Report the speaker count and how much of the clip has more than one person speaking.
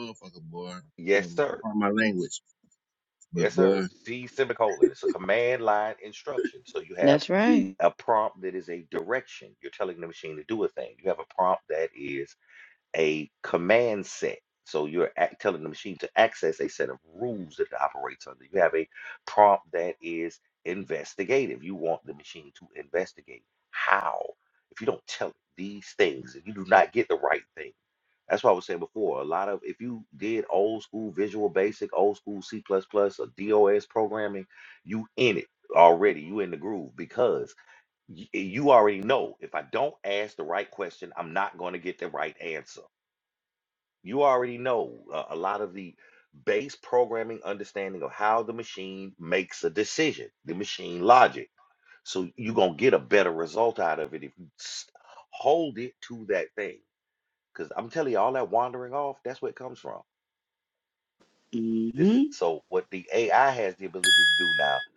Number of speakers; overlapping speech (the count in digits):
3, about 2%